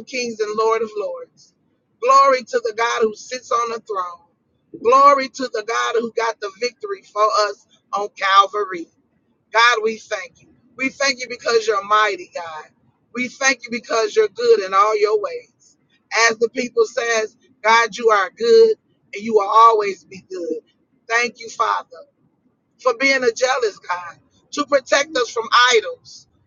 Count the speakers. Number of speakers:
1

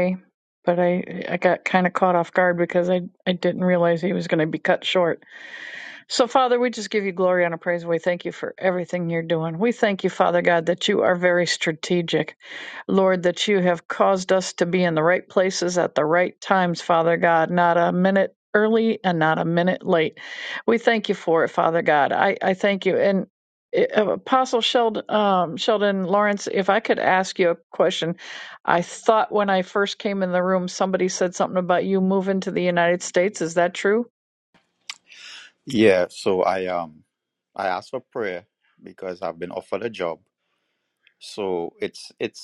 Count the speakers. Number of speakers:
2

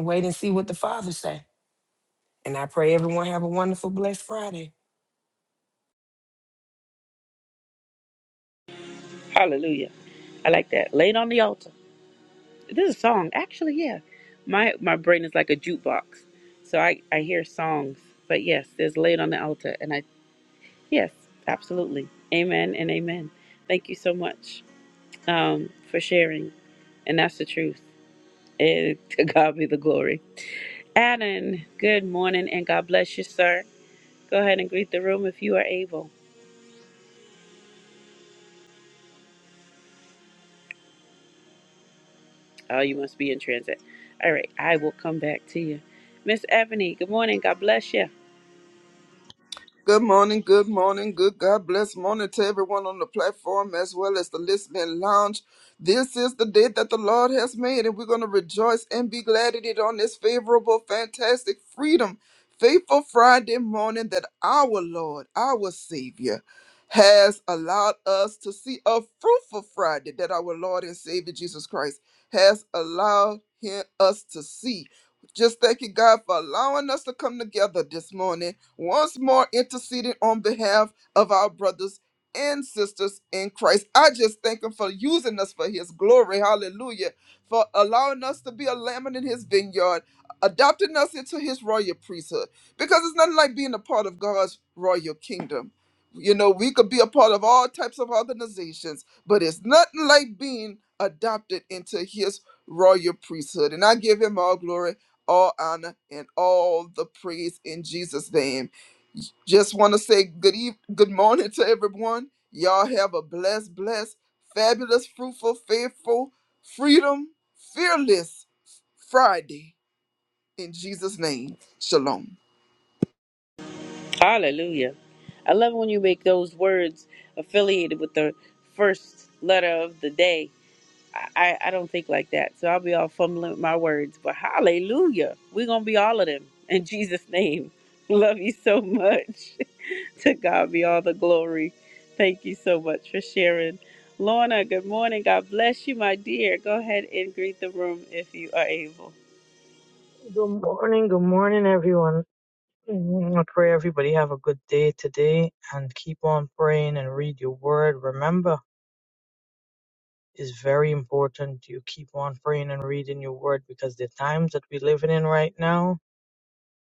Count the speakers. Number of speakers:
4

